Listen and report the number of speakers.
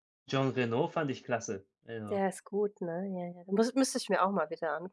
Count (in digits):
2